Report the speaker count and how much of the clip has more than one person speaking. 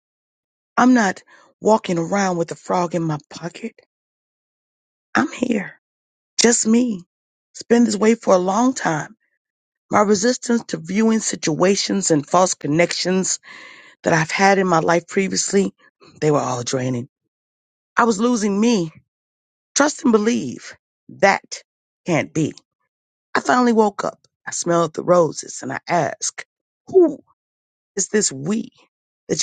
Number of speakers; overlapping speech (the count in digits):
1, no overlap